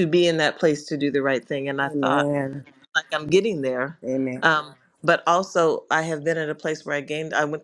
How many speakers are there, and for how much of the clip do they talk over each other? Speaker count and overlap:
2, about 6%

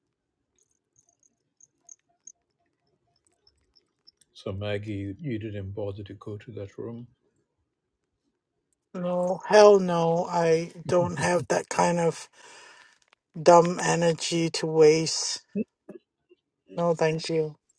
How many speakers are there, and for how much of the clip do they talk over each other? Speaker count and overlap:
2, no overlap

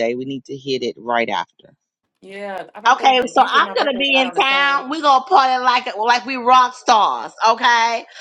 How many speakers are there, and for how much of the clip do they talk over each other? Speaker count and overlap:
3, about 24%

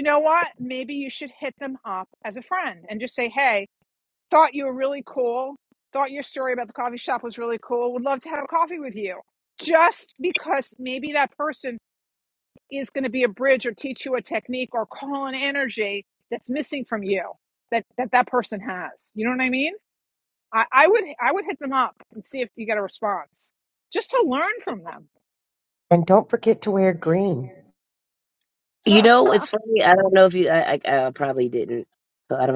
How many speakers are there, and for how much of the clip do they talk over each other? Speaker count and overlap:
3, no overlap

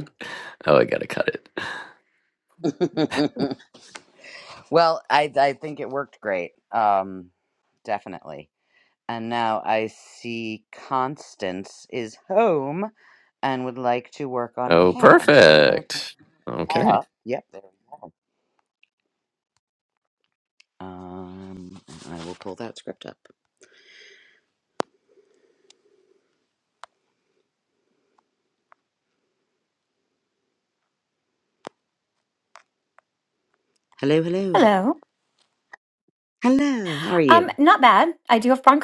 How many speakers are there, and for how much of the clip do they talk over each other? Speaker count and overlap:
3, about 4%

